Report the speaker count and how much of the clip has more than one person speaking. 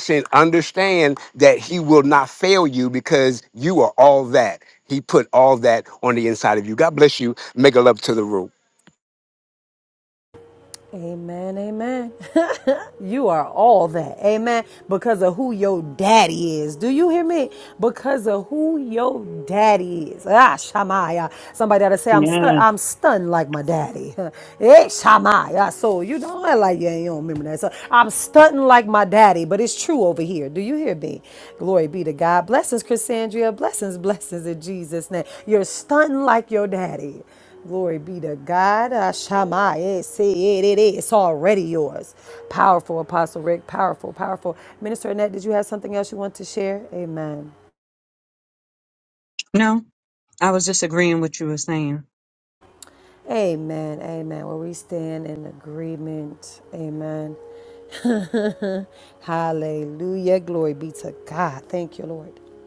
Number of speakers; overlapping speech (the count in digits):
3, about 1%